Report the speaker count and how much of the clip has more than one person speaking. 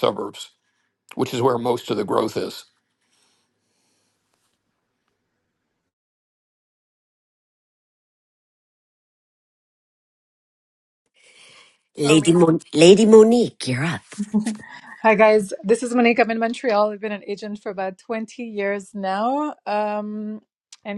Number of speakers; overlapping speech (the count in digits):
3, about 1%